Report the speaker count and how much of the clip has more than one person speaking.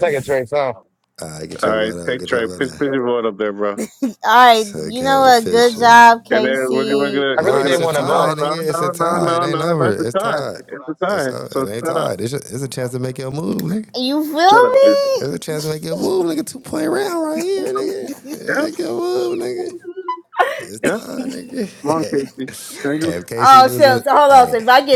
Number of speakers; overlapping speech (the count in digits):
4, about 43%